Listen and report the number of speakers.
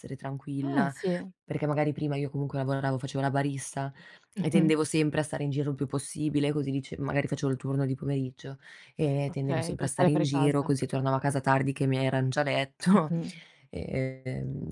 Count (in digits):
2